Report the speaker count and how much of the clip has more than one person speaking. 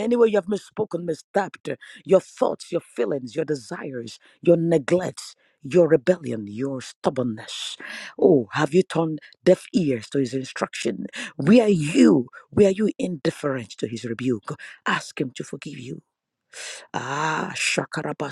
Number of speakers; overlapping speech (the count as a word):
one, no overlap